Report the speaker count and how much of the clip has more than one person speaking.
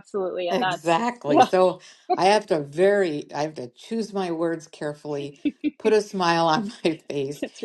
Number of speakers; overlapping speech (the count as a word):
two, about 7%